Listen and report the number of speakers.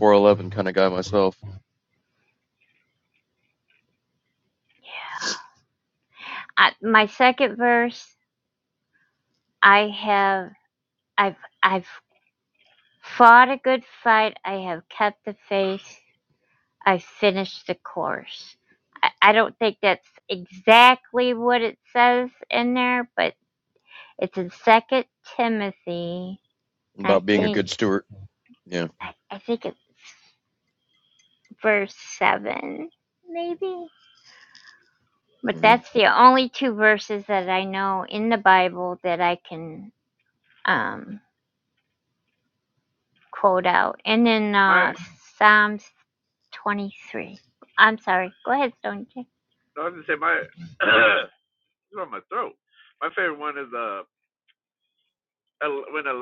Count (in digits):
3